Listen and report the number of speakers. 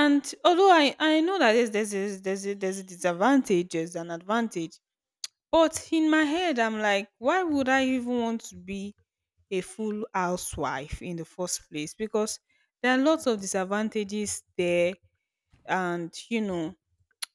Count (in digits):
1